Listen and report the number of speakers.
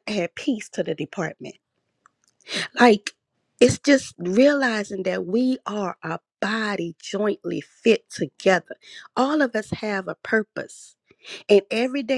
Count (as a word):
one